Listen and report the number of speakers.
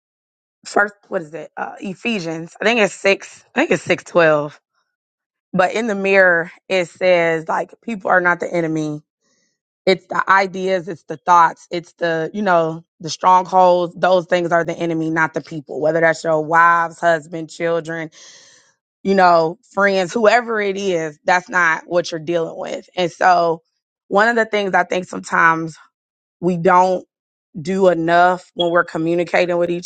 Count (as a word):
one